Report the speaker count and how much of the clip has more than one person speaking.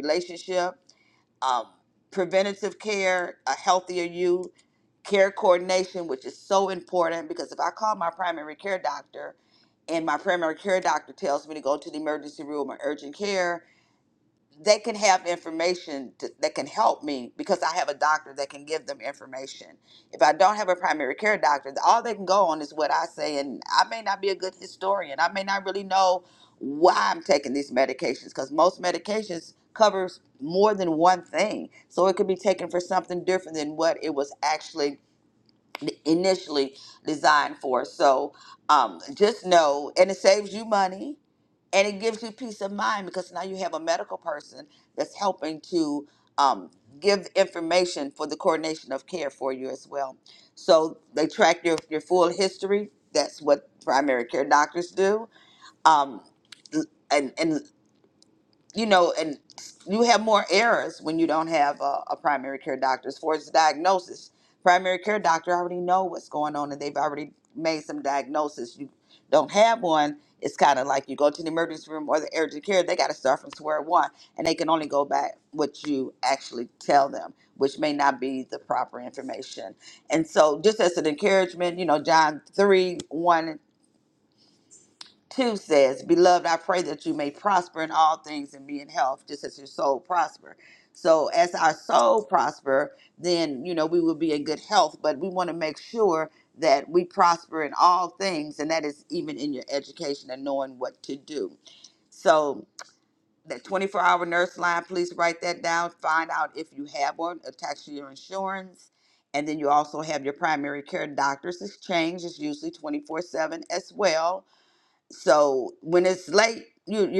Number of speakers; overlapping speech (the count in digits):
1, no overlap